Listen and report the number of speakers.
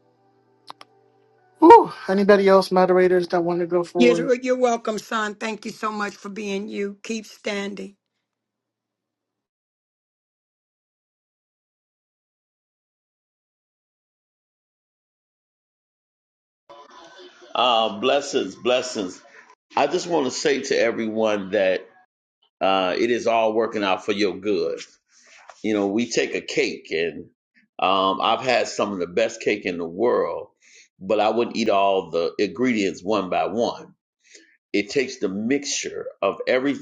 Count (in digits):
3